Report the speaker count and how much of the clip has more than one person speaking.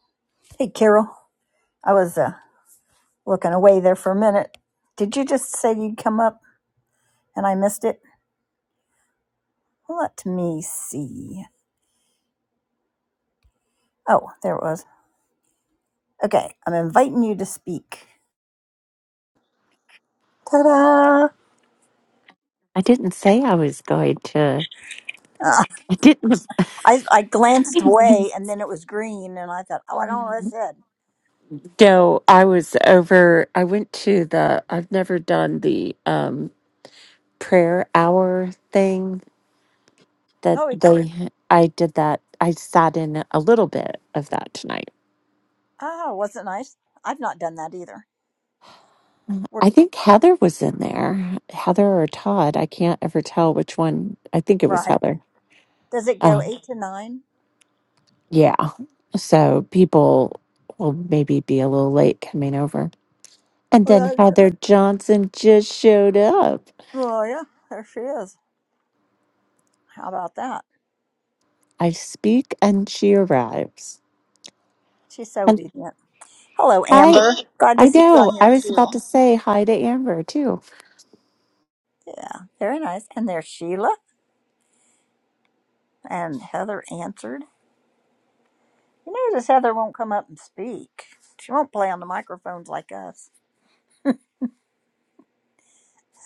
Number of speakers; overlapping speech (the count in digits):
2, about 3%